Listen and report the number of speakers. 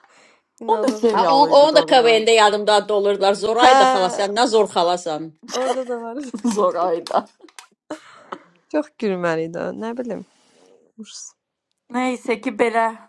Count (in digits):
3